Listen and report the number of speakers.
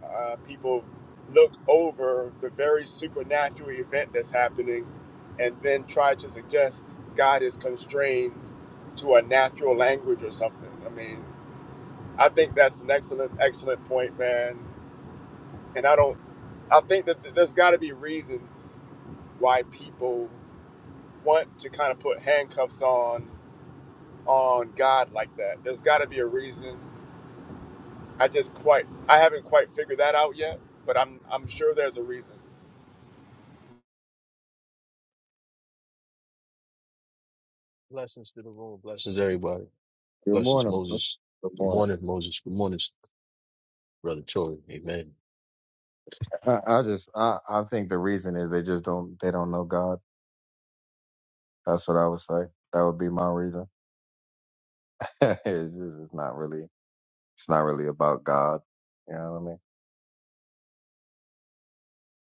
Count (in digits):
3